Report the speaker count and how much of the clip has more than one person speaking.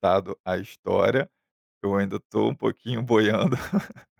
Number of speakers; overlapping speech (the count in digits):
1, no overlap